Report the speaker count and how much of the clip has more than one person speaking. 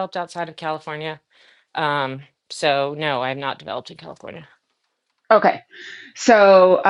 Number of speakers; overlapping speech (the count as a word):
two, no overlap